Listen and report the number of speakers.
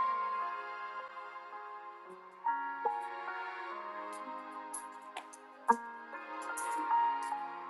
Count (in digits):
0